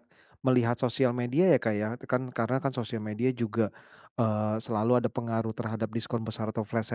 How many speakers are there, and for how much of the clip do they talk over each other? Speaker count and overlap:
1, no overlap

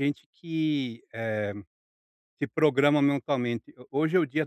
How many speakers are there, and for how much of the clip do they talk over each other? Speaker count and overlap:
1, no overlap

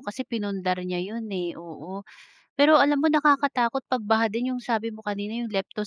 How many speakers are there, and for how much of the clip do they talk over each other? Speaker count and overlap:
1, no overlap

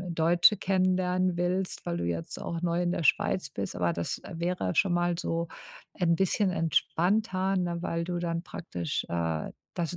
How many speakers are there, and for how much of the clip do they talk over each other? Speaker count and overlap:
1, no overlap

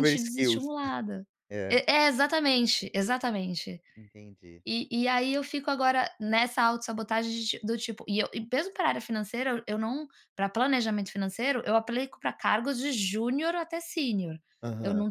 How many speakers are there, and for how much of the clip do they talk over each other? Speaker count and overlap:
2, about 6%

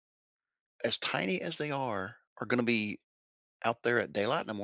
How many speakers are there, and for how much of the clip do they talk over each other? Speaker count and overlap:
1, no overlap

